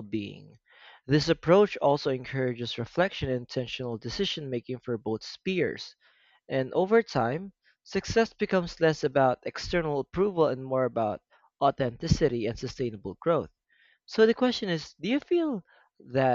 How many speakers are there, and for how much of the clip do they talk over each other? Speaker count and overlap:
1, no overlap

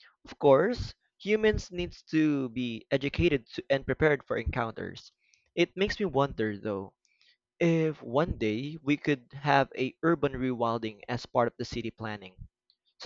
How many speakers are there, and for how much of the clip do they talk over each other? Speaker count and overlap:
1, no overlap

